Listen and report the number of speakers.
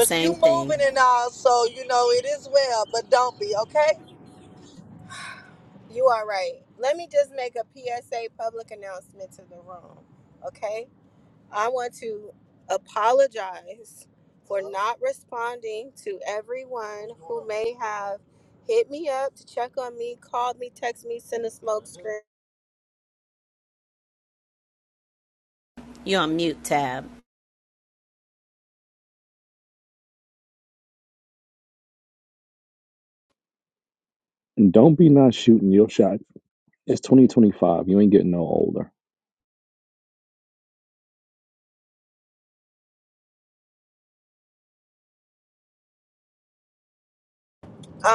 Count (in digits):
4